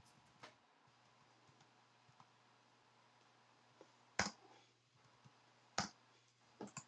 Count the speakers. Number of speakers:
zero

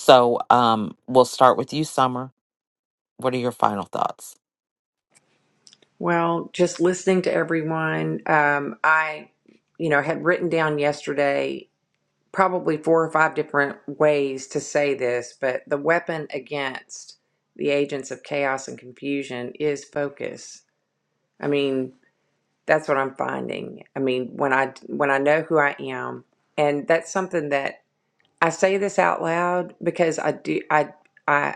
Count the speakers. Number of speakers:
two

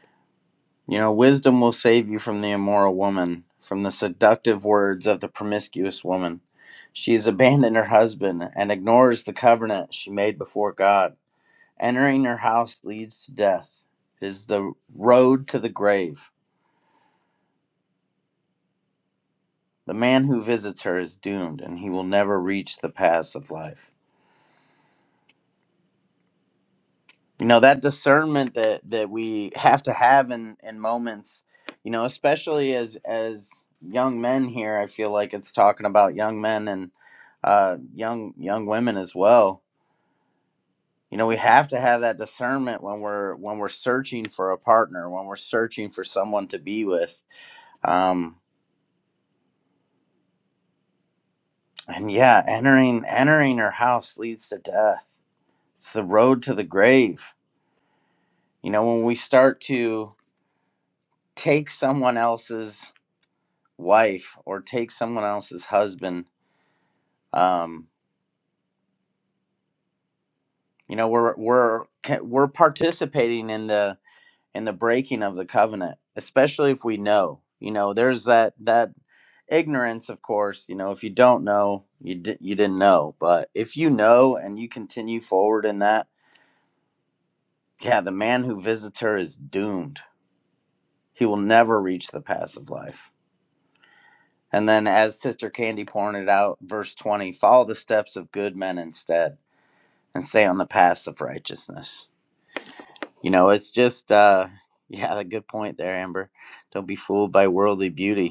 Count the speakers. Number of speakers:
one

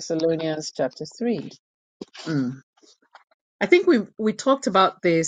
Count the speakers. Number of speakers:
one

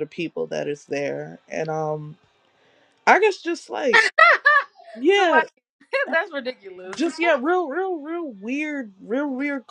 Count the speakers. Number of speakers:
two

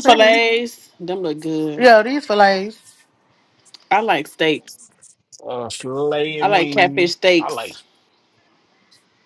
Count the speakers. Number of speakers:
three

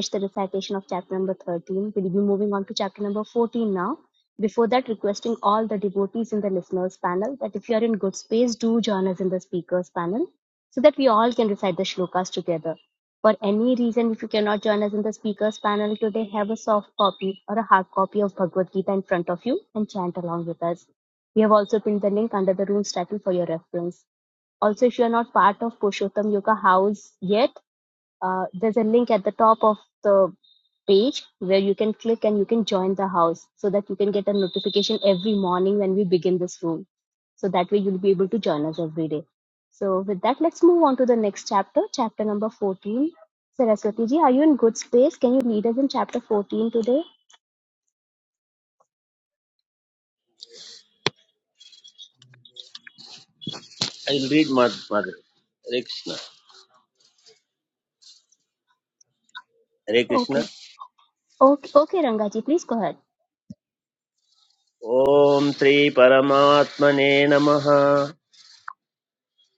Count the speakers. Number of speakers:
two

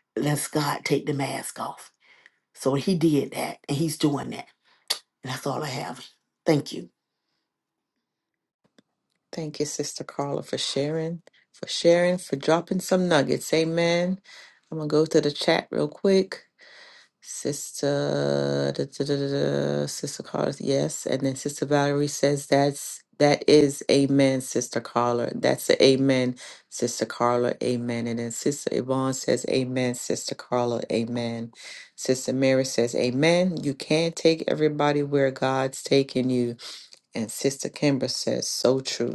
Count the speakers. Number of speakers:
two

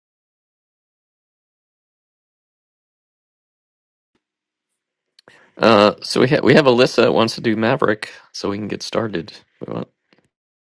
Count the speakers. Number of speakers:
one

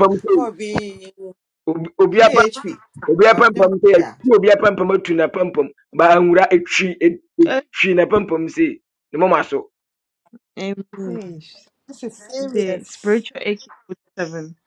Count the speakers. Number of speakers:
four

